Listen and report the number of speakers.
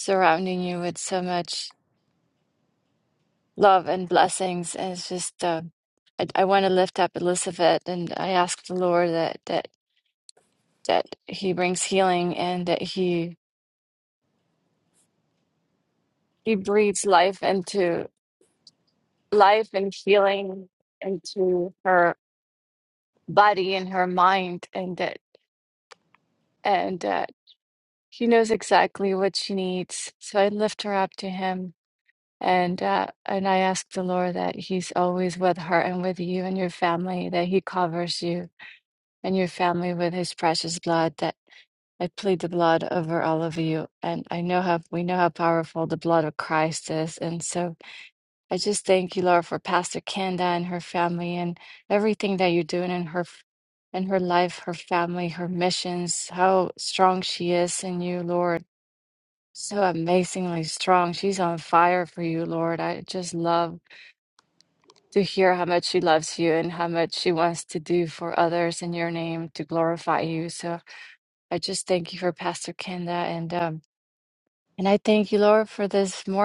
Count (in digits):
1